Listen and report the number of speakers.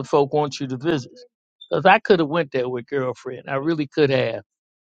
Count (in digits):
1